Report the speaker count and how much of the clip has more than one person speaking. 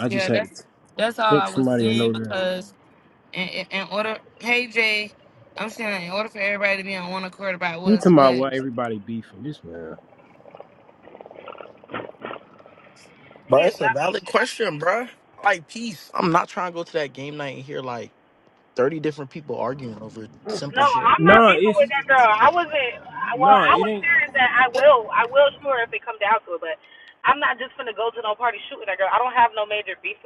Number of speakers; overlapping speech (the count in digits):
4, about 15%